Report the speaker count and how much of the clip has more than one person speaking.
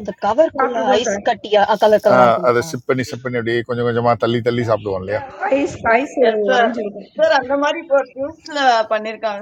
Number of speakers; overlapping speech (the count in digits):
4, about 17%